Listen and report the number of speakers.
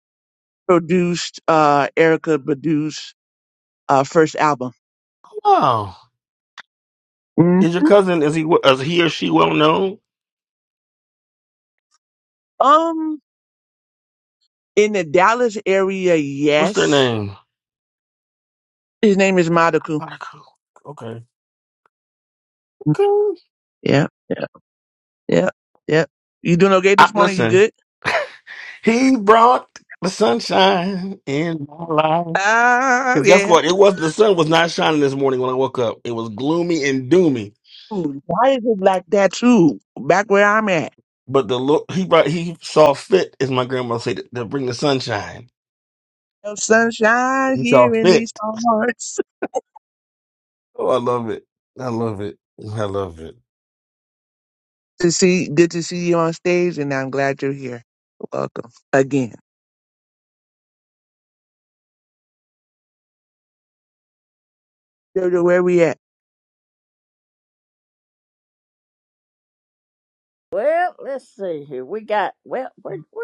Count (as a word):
three